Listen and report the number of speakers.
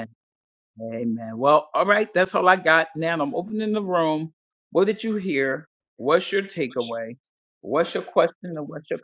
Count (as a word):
one